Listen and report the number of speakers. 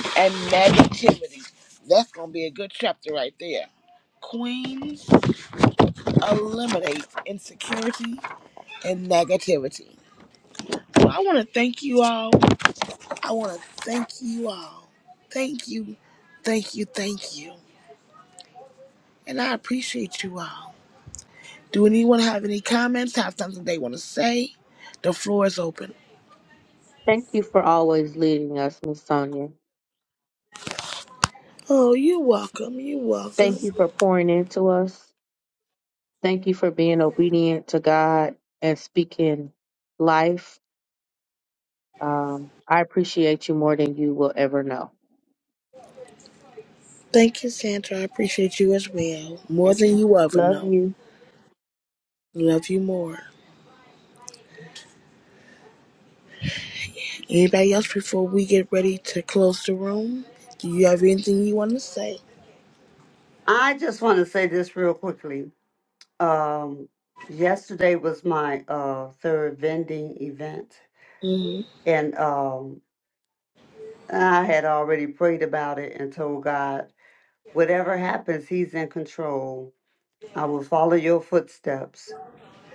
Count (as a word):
three